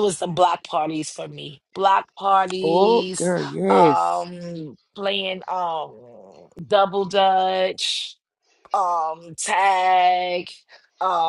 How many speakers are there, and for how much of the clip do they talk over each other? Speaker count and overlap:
2, about 7%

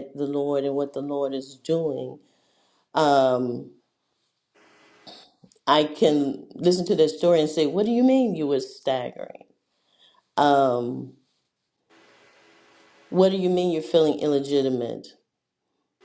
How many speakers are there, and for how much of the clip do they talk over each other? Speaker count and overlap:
1, no overlap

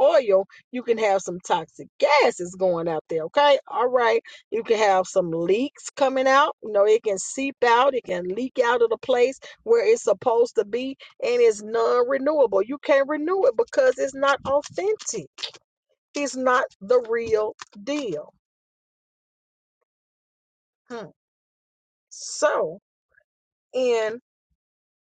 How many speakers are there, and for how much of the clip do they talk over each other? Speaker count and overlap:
1, no overlap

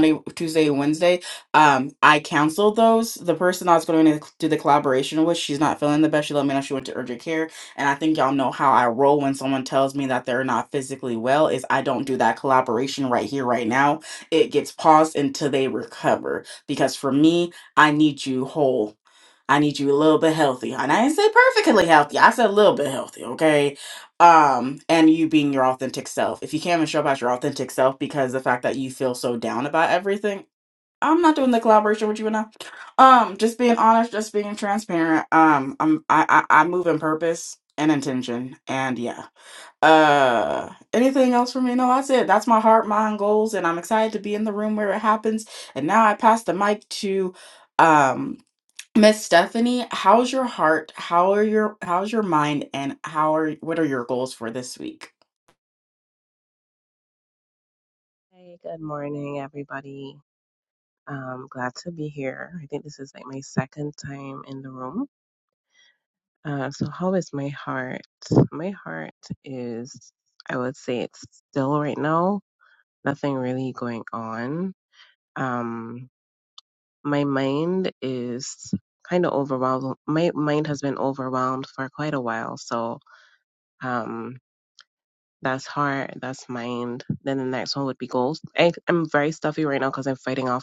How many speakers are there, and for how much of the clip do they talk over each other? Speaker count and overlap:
2, no overlap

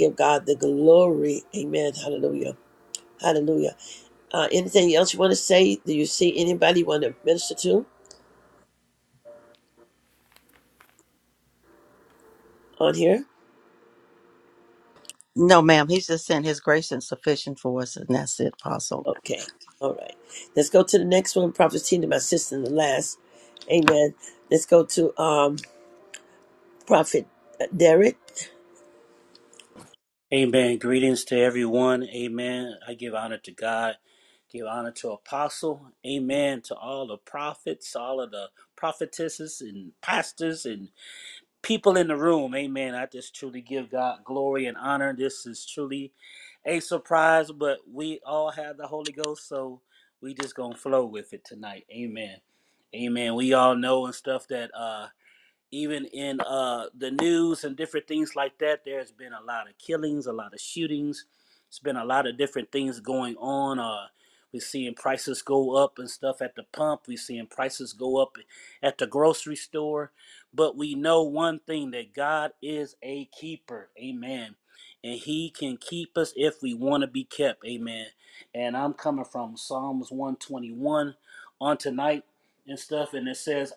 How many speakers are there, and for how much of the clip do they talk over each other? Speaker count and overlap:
3, no overlap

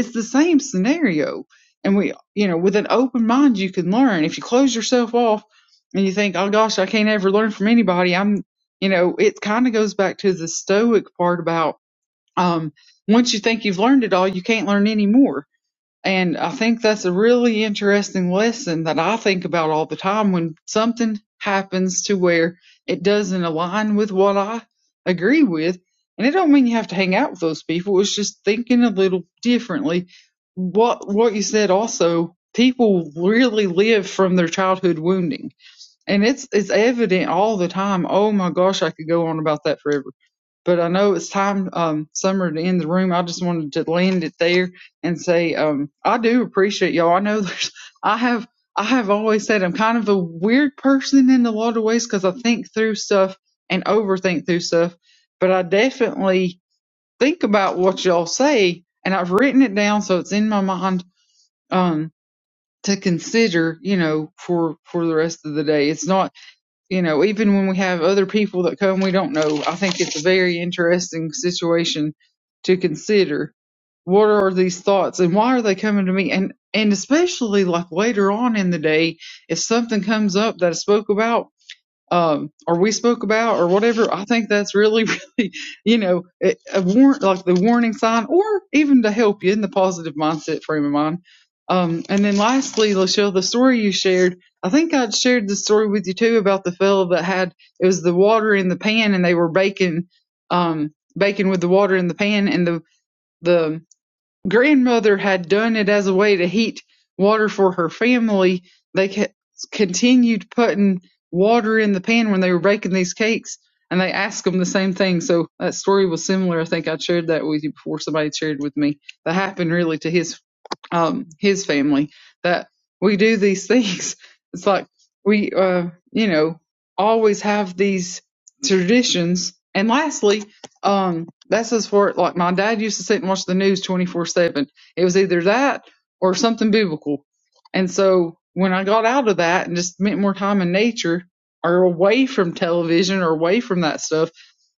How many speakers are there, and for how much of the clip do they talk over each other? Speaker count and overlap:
1, no overlap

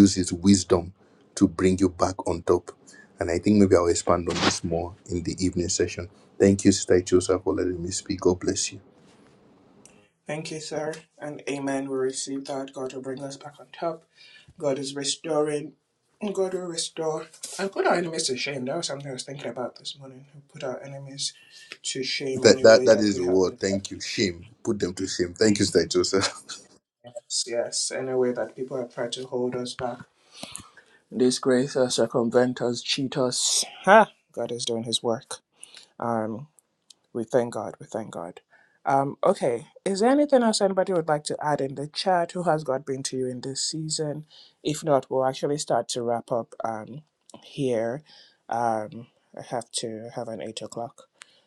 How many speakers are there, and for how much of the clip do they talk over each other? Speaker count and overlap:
2, about 2%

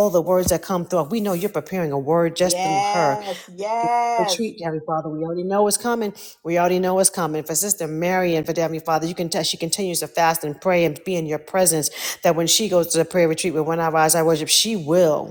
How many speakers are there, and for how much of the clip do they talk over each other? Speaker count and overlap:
2, about 6%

